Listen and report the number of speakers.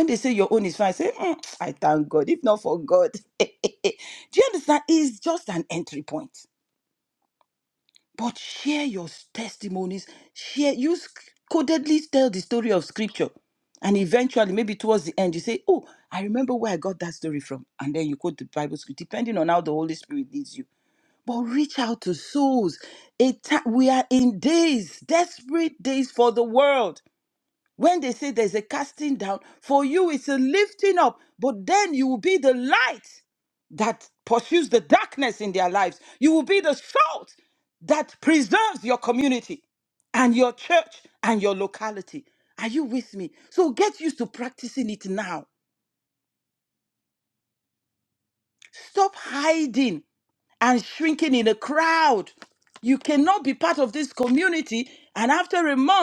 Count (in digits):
1